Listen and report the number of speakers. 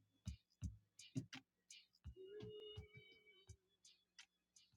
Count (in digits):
0